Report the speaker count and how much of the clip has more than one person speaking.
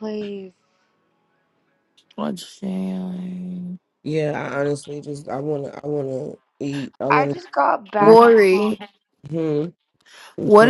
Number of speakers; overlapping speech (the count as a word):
three, about 7%